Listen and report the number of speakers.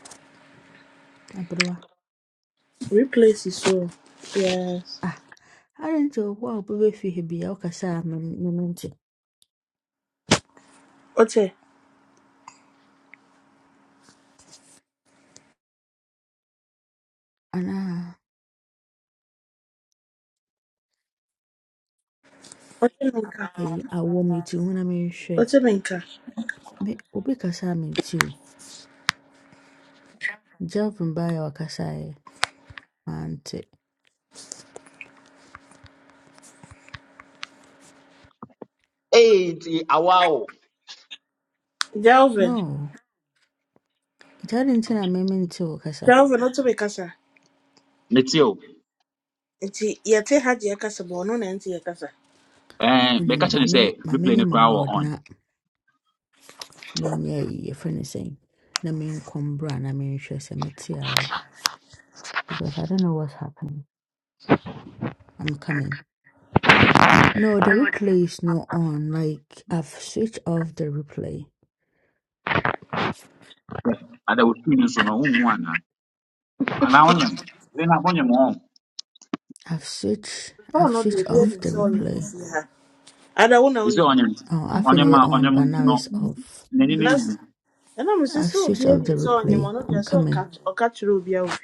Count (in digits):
3